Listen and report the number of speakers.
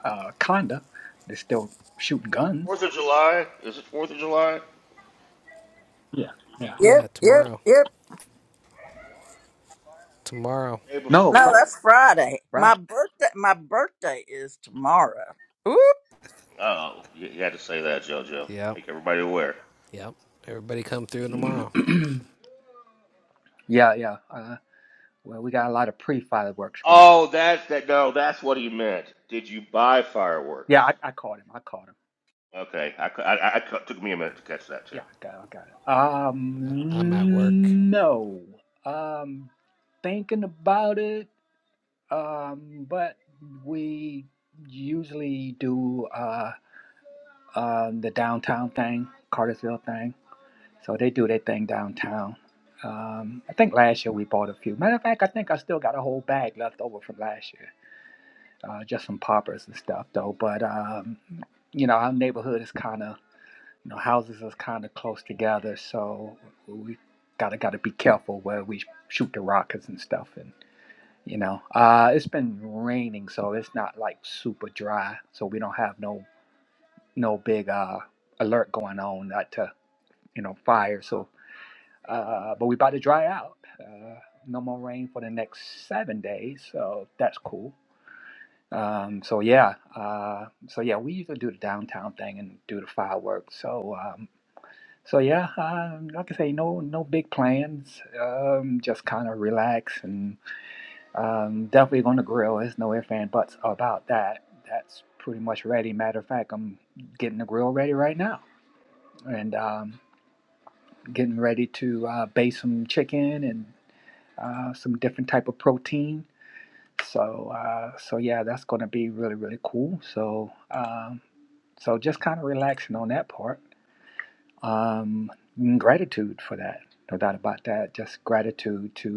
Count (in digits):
4